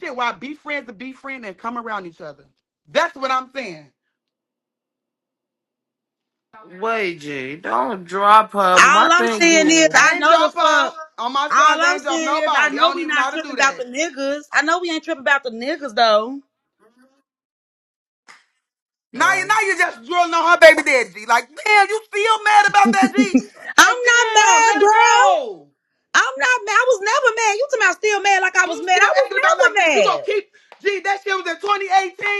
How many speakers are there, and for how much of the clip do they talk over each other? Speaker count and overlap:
three, about 24%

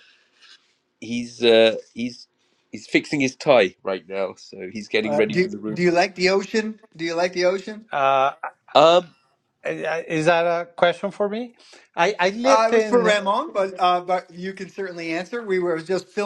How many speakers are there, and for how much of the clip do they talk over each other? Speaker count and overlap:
three, about 9%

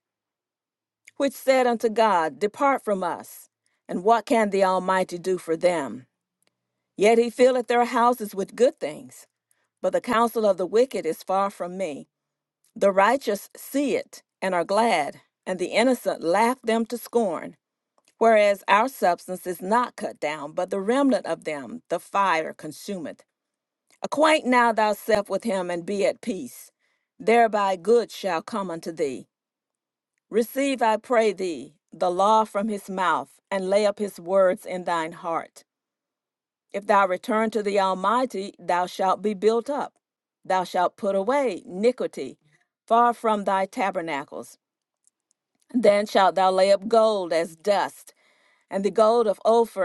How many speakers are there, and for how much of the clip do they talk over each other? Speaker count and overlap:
one, no overlap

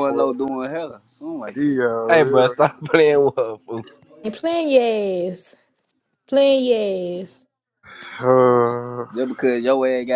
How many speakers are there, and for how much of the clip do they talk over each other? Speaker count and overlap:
four, about 10%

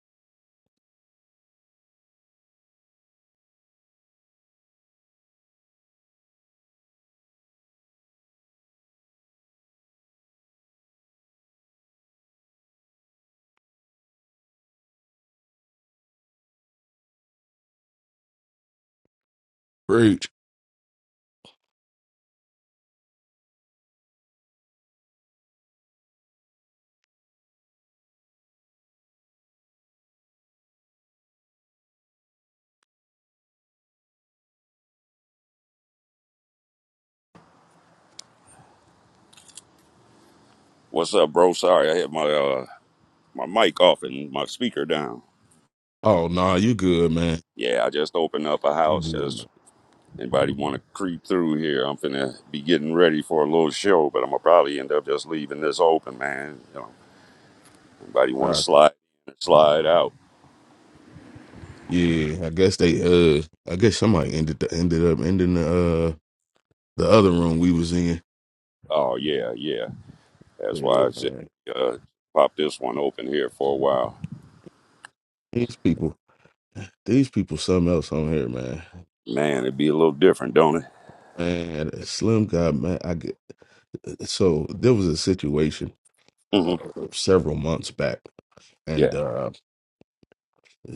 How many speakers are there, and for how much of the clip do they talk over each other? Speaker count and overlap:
two, about 2%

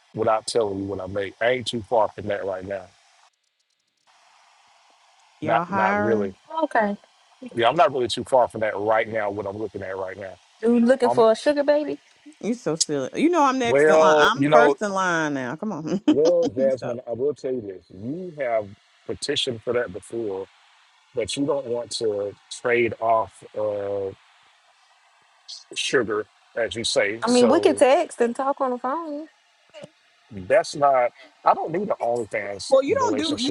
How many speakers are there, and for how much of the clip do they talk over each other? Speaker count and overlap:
three, about 13%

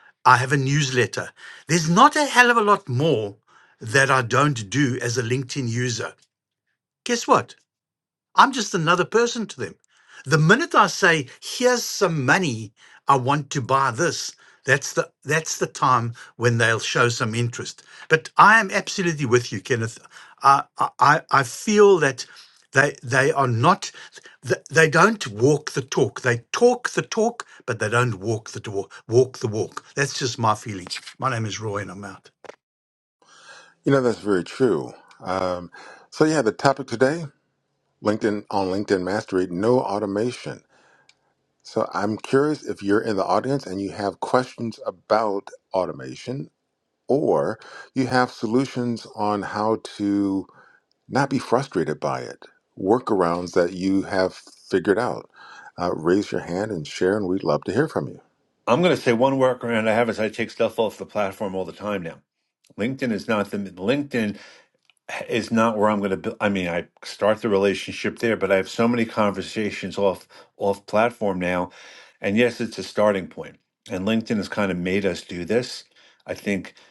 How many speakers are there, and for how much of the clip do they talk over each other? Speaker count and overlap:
three, no overlap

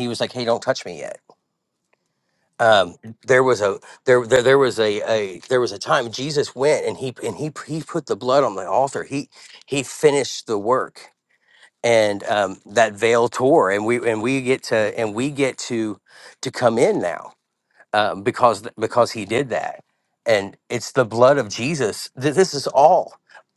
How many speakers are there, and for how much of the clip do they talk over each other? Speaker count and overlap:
one, no overlap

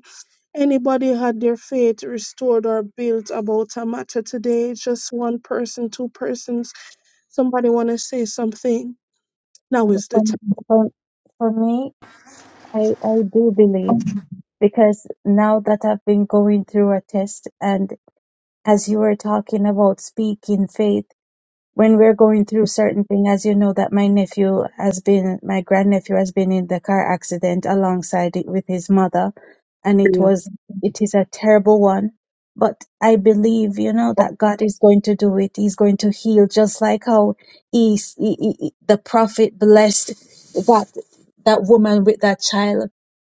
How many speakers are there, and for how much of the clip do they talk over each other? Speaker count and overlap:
two, about 2%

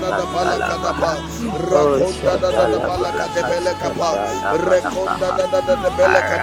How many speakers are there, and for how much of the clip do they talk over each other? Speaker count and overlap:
two, about 53%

